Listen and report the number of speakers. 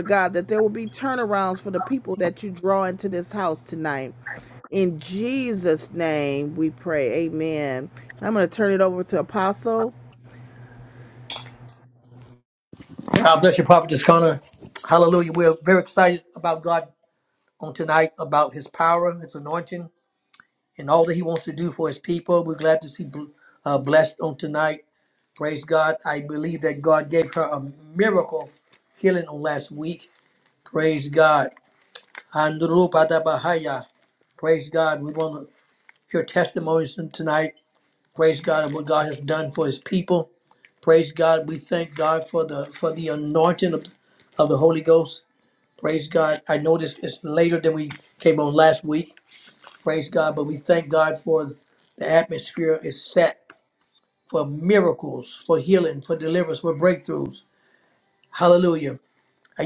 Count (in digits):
2